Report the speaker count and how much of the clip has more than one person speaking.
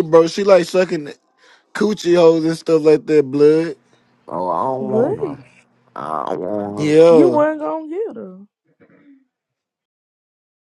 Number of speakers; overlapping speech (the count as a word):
three, about 9%